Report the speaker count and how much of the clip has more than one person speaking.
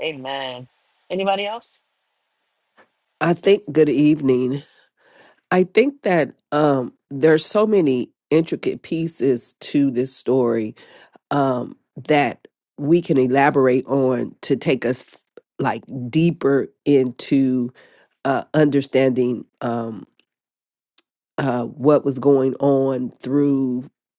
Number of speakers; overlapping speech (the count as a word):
two, no overlap